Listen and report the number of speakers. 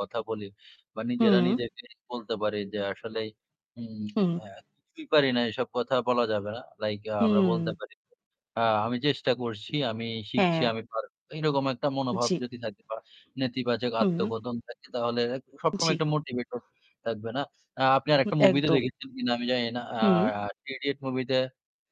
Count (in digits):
2